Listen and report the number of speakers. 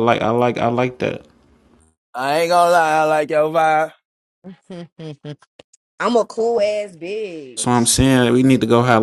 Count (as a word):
three